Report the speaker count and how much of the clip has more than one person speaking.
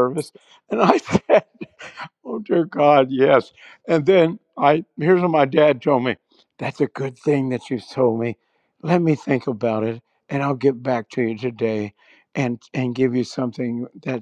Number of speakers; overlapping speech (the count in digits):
1, no overlap